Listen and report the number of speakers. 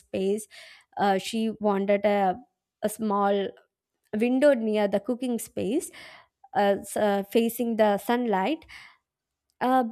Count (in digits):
1